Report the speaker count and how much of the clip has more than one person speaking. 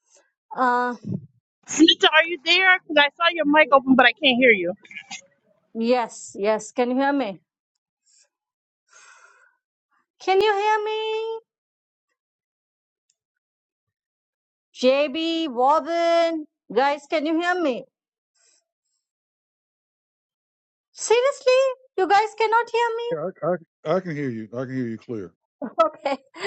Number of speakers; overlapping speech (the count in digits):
3, under 1%